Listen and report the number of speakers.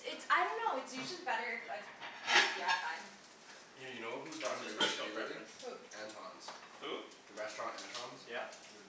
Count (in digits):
3